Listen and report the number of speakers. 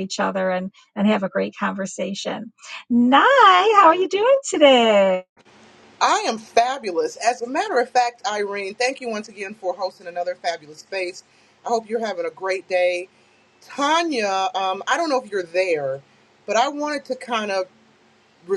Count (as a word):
two